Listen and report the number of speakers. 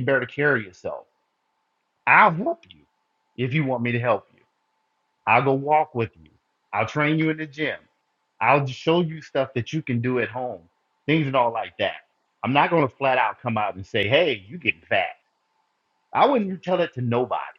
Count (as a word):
one